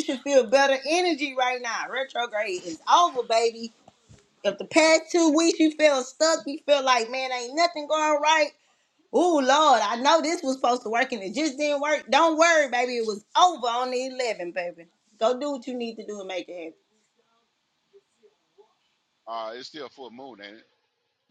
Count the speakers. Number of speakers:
two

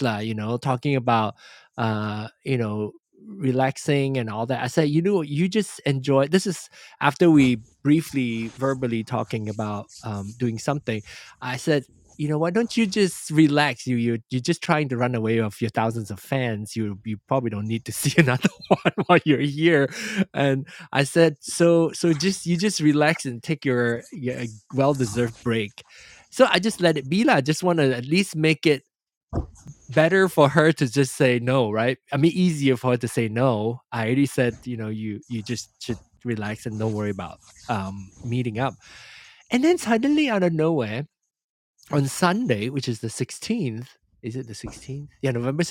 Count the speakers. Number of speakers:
one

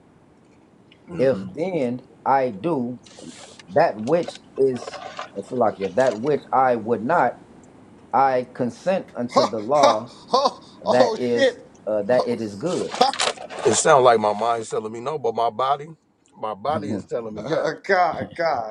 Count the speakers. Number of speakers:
three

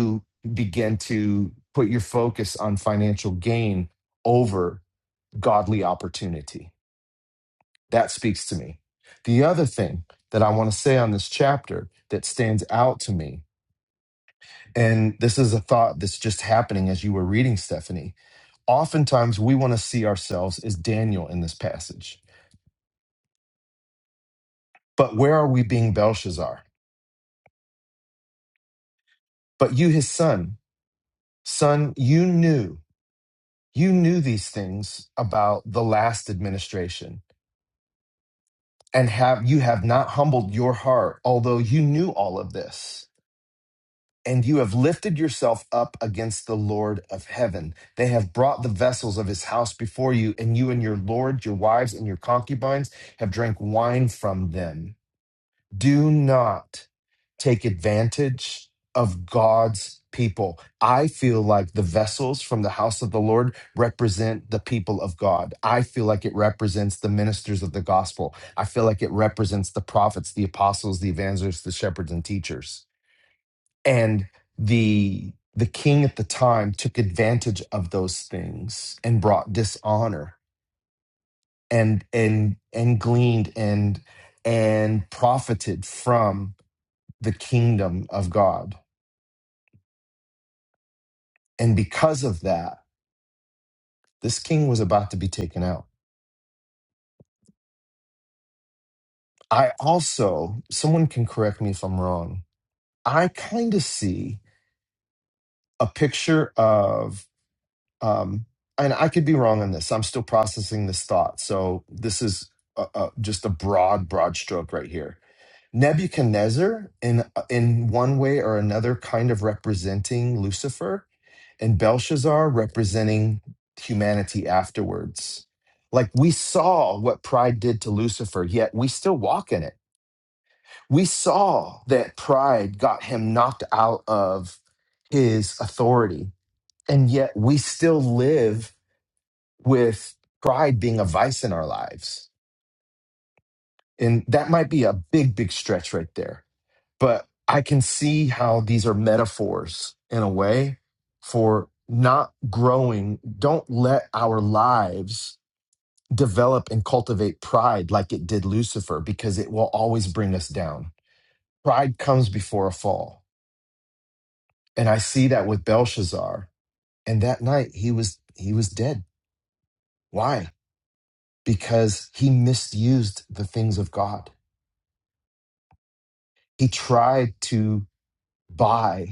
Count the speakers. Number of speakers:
one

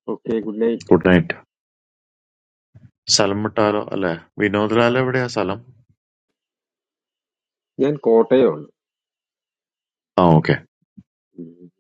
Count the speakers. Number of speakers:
two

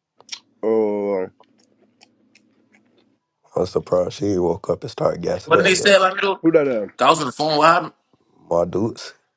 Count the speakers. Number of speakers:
three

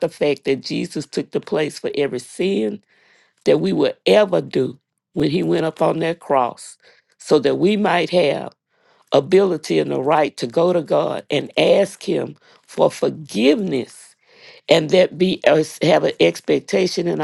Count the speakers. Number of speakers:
one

